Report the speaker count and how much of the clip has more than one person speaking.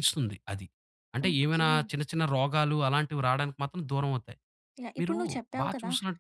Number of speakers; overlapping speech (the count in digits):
2, about 18%